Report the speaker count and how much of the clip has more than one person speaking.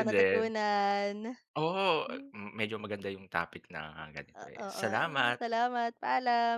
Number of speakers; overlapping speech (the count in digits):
2, about 20%